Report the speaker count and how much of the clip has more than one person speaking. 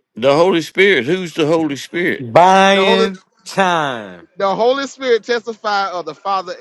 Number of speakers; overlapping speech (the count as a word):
three, about 6%